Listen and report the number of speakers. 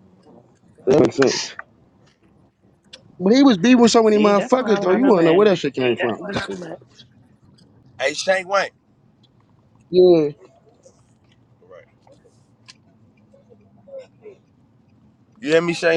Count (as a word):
three